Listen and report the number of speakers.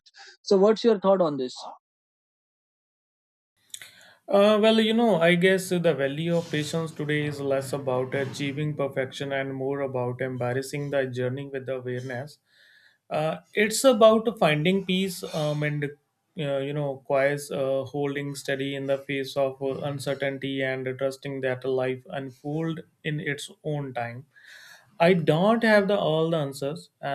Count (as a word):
two